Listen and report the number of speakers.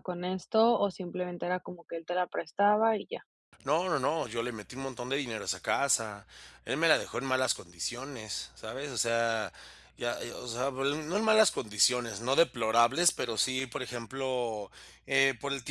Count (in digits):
2